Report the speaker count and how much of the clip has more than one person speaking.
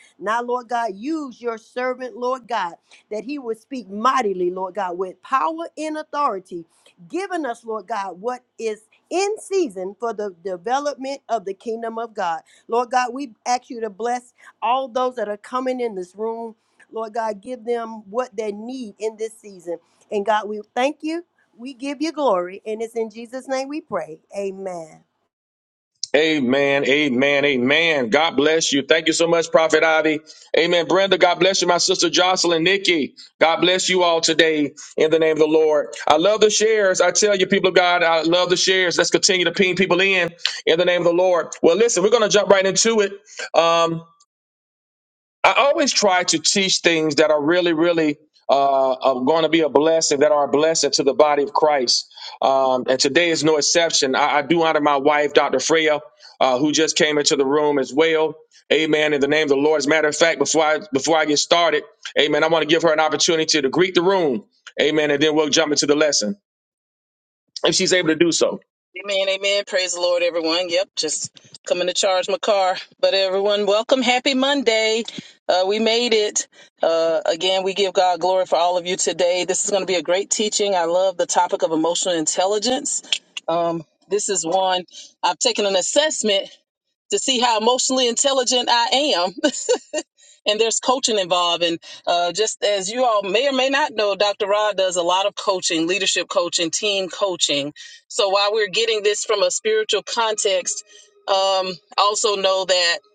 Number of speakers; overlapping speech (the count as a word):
three, no overlap